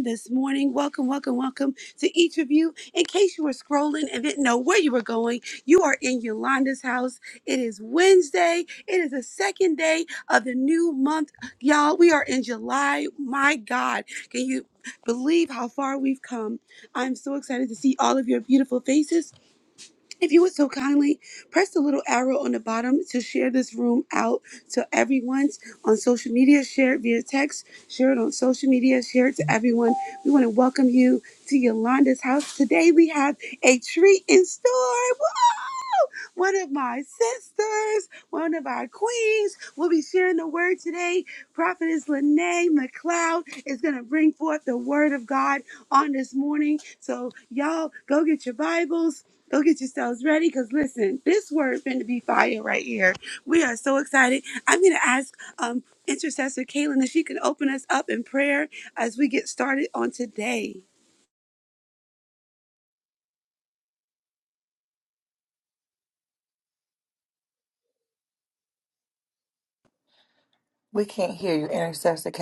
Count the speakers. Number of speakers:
2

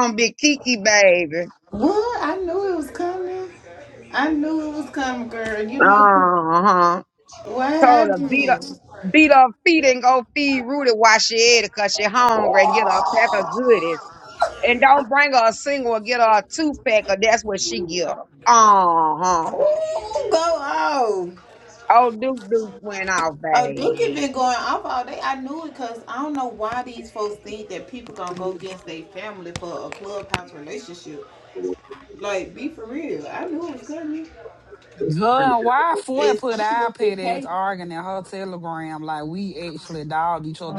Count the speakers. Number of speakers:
3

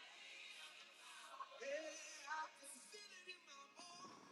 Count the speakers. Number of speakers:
0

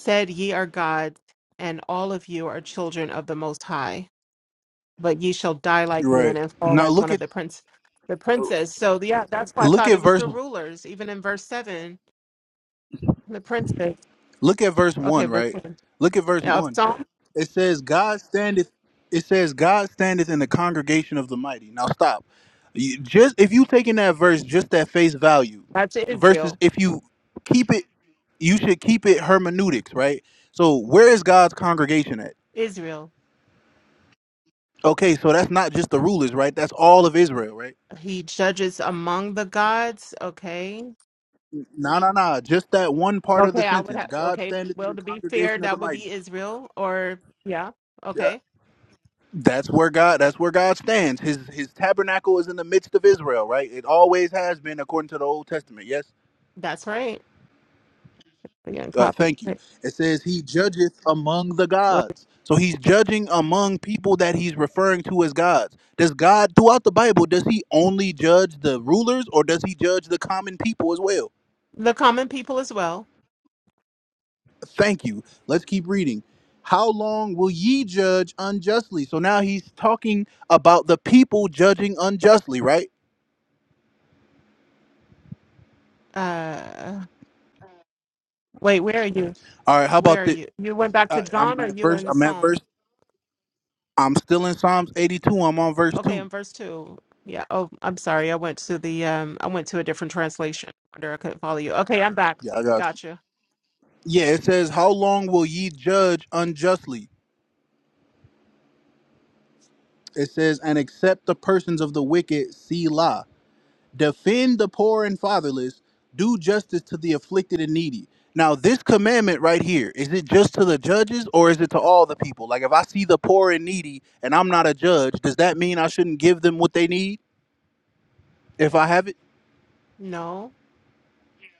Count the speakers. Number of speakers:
2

